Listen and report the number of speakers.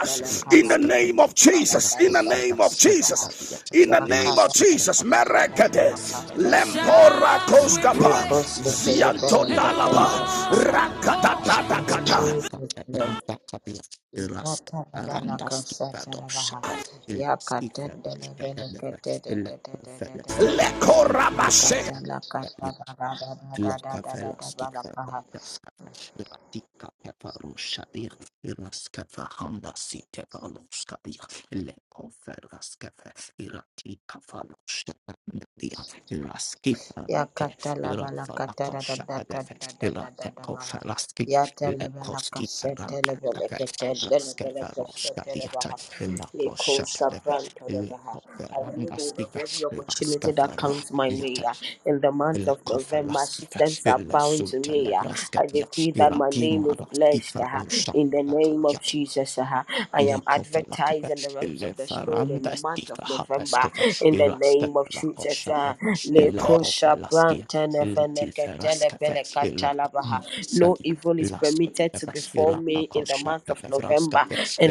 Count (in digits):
3